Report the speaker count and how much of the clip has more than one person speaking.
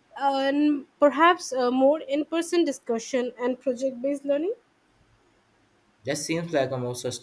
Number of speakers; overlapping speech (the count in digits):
2, no overlap